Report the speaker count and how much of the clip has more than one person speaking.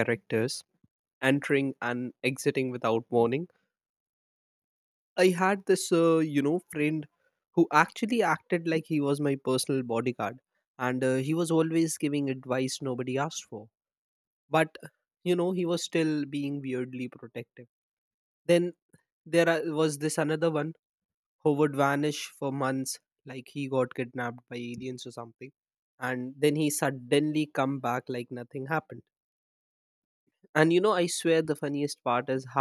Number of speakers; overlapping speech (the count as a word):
one, no overlap